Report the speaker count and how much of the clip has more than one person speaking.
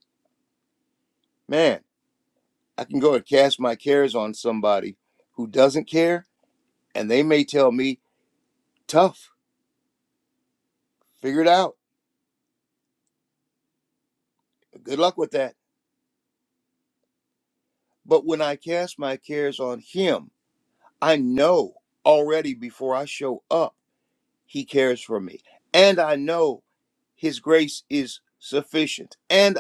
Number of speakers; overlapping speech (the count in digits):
1, no overlap